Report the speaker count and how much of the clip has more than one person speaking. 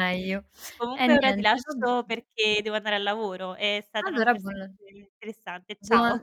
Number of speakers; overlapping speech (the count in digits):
2, about 29%